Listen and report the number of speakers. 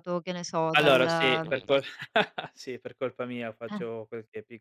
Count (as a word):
two